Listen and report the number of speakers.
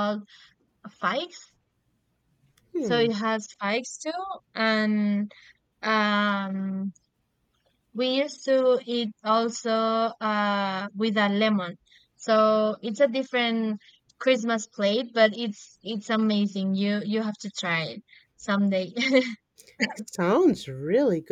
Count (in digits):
2